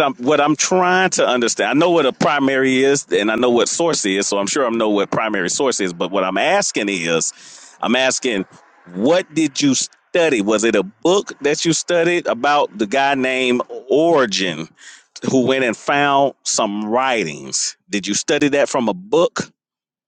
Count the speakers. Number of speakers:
one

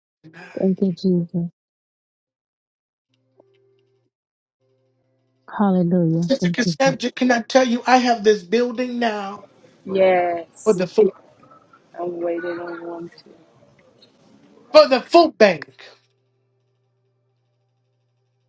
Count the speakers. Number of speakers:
three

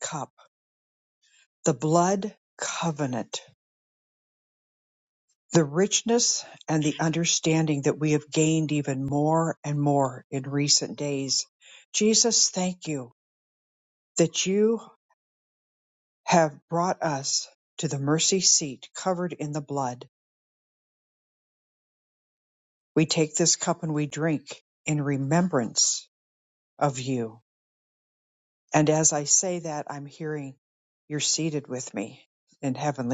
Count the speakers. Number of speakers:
one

